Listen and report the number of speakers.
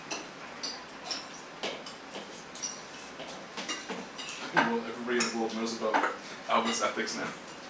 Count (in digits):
1